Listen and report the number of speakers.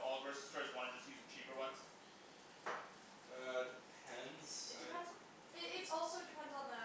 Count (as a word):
three